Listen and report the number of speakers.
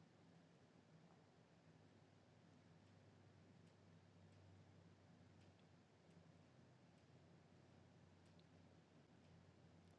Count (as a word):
zero